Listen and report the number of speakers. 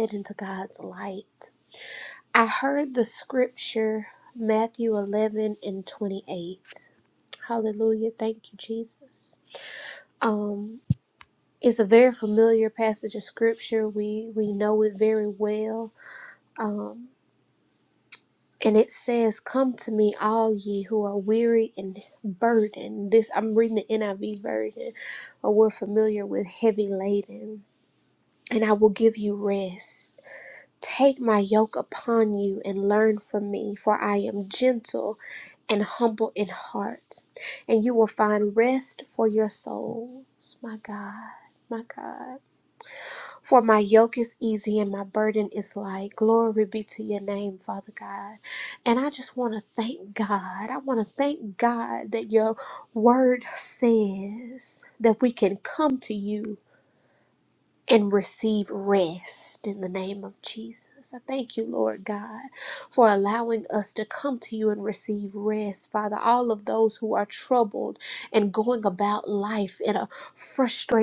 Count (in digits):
1